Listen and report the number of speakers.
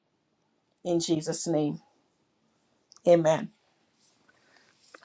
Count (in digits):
1